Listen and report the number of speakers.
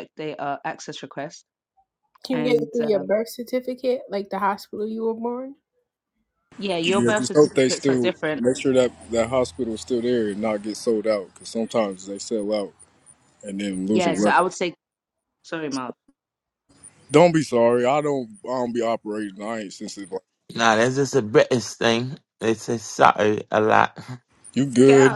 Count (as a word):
four